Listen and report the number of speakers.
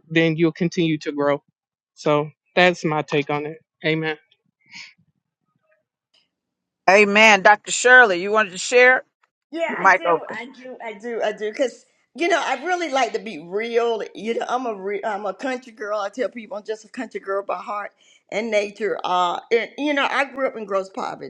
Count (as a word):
three